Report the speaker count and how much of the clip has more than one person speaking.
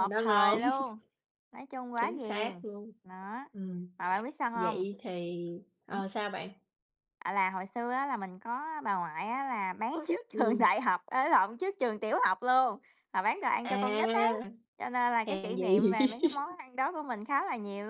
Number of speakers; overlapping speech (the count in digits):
2, about 19%